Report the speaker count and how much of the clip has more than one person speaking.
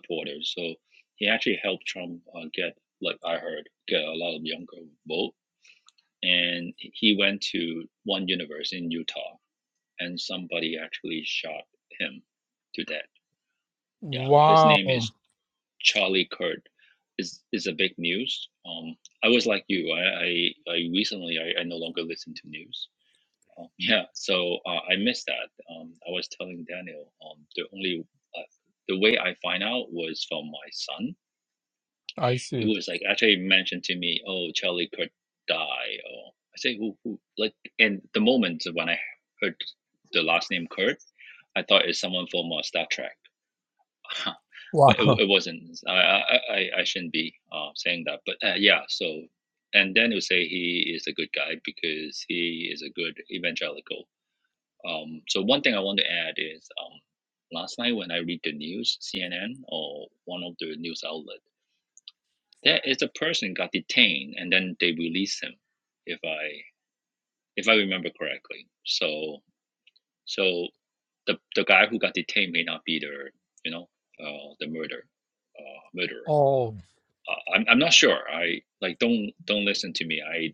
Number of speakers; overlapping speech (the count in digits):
2, about 2%